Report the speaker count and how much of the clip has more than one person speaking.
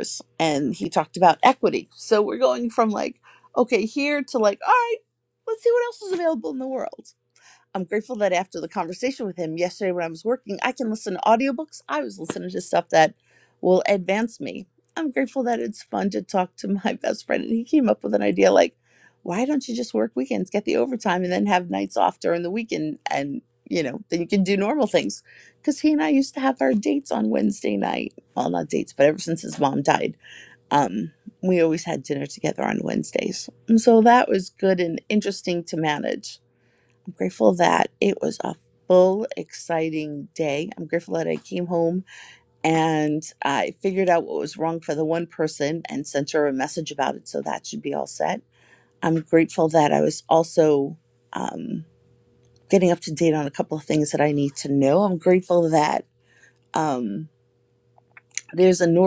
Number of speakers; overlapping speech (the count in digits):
1, no overlap